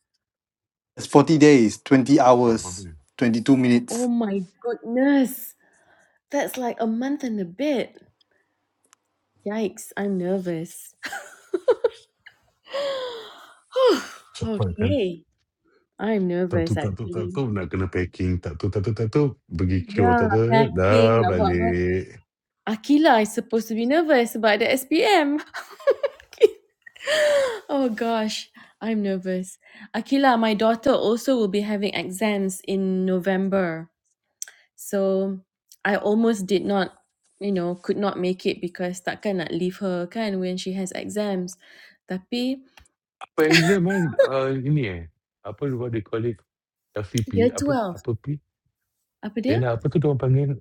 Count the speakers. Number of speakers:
three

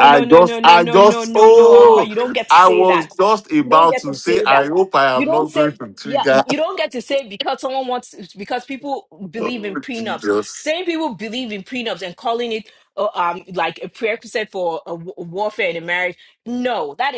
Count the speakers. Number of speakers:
two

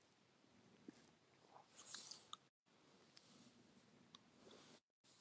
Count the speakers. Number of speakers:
zero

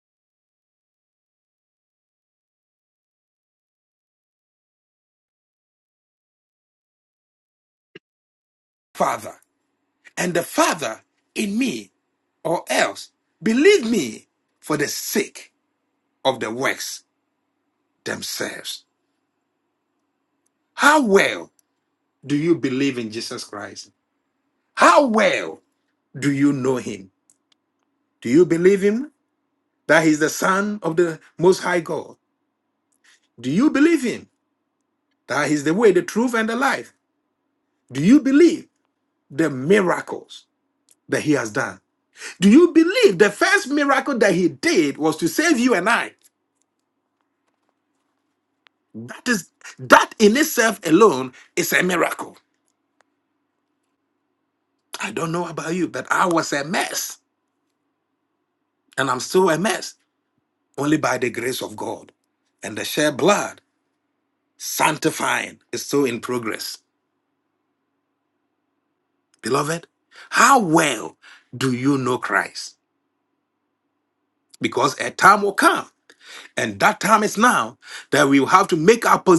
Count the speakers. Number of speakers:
one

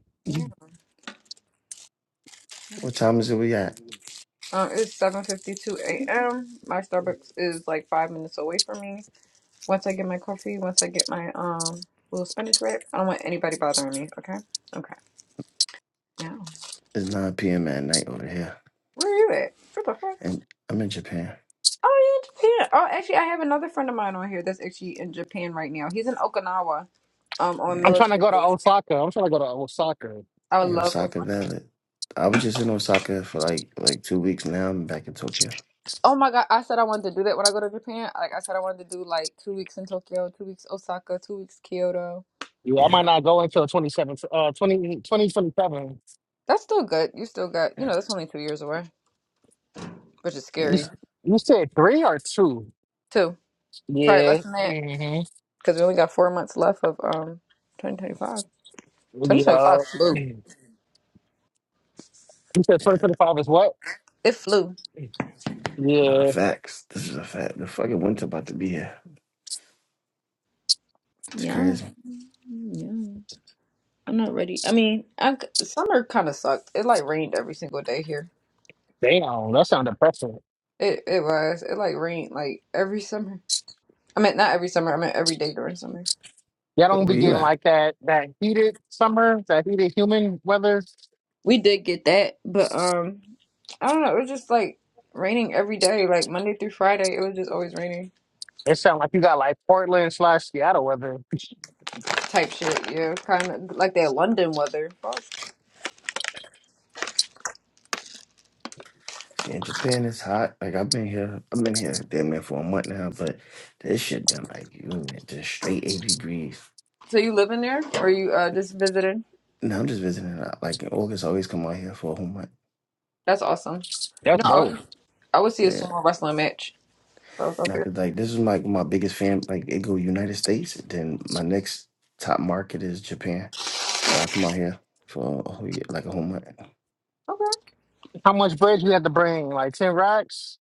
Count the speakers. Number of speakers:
three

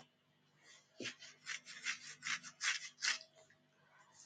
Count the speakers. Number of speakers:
zero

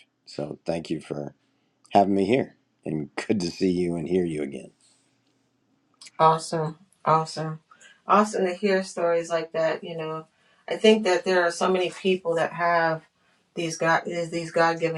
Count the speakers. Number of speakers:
two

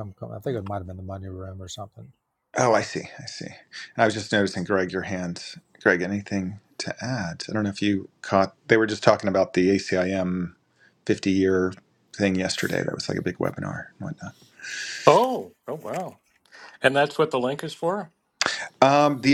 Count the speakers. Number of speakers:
three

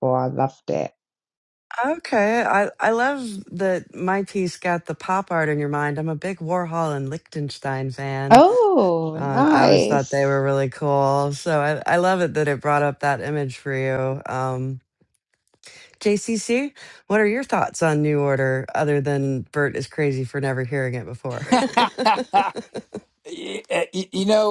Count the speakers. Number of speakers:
three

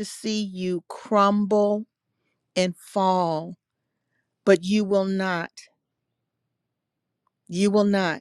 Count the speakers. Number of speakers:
one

